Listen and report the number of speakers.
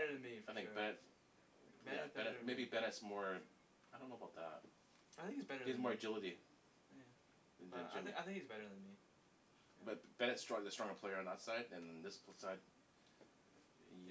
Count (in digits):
2